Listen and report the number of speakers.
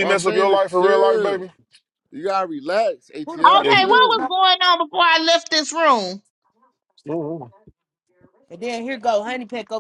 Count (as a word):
four